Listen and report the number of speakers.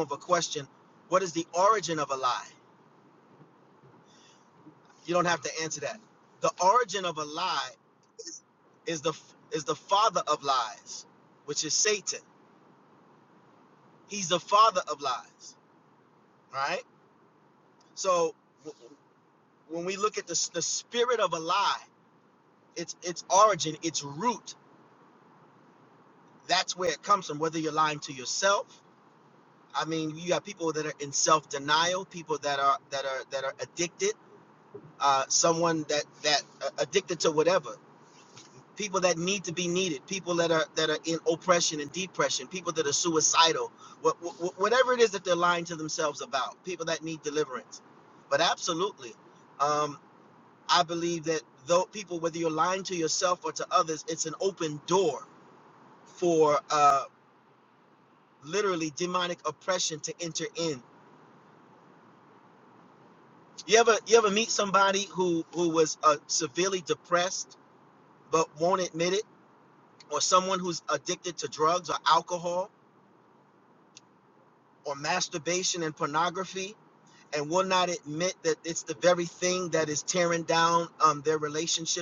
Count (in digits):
1